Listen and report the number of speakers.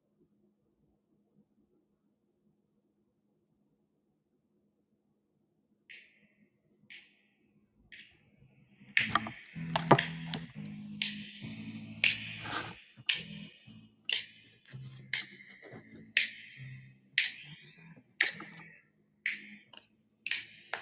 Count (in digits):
0